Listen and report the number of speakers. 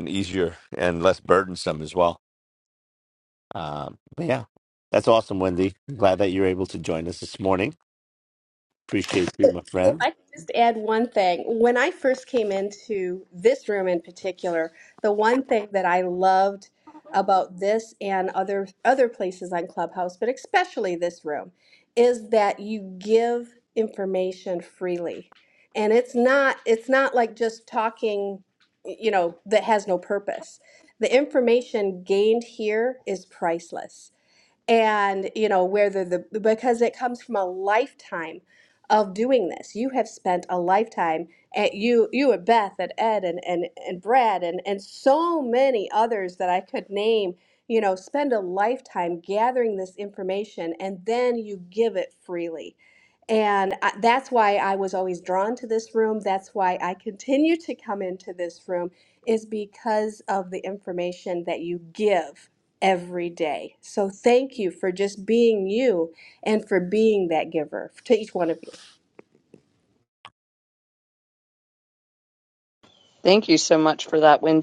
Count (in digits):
3